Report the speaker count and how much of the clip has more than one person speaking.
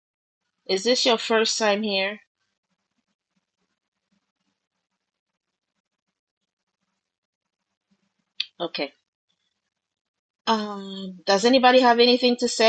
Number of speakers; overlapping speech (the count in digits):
1, no overlap